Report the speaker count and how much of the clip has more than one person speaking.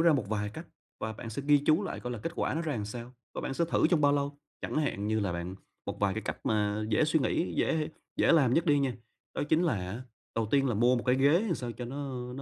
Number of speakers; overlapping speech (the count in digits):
1, no overlap